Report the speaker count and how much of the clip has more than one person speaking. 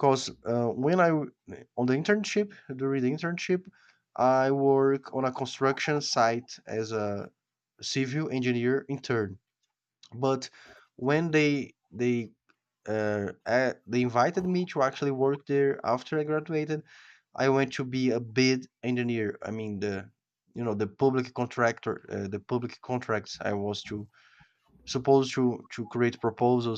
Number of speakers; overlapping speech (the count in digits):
1, no overlap